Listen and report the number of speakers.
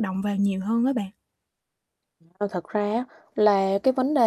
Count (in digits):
2